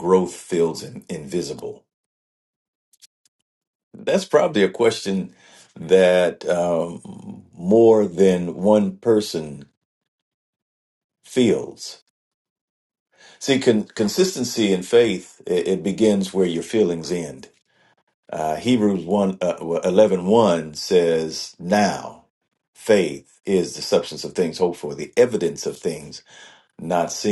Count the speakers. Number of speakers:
one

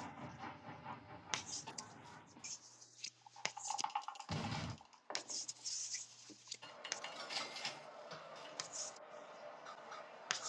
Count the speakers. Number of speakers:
zero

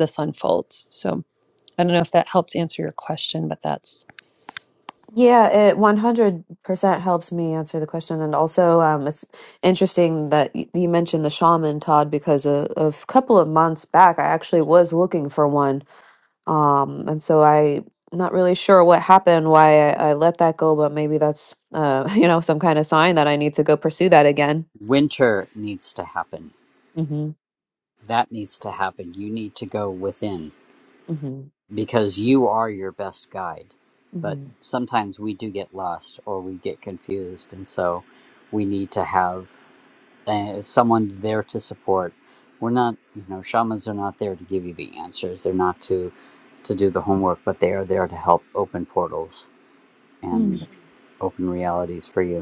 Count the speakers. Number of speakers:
three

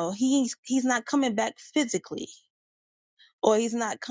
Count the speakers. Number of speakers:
one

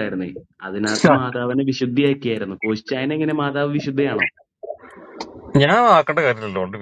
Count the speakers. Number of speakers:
two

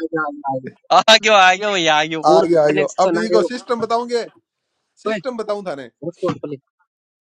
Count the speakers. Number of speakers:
three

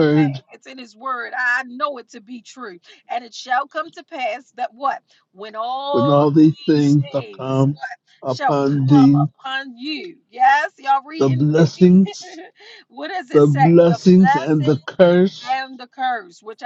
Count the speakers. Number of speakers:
two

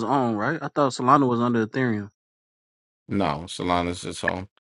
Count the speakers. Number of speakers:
two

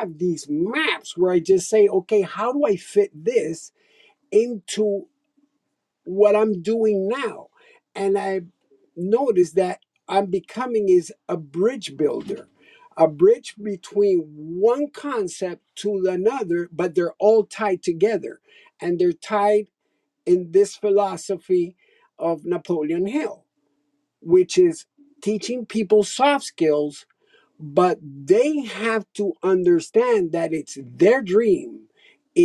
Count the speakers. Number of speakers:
one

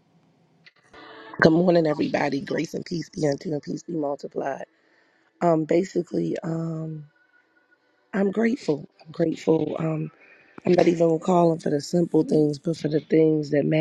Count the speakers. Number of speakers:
one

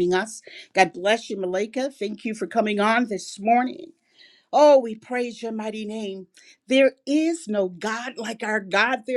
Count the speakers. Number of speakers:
one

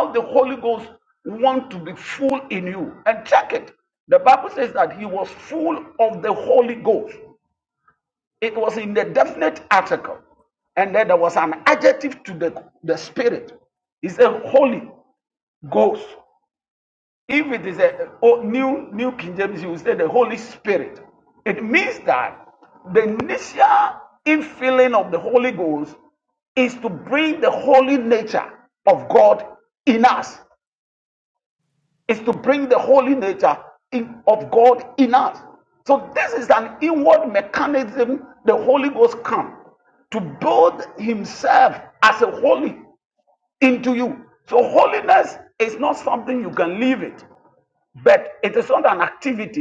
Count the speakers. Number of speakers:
one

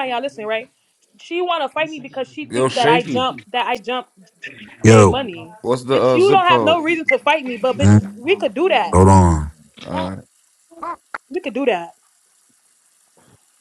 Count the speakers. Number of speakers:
three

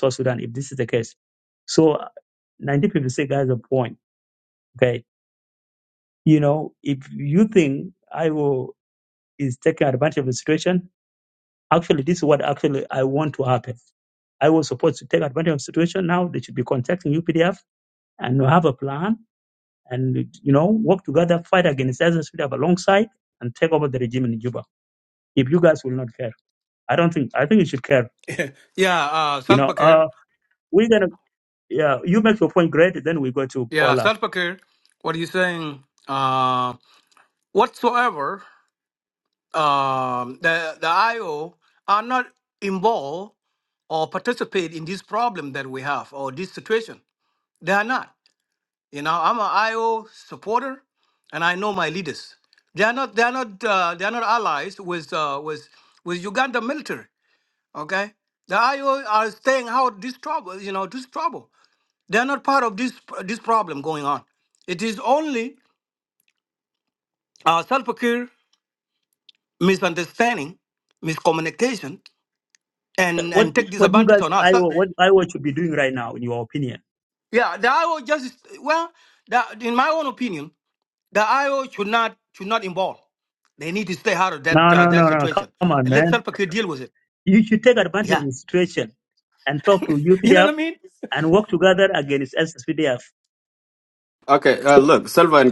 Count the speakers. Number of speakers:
three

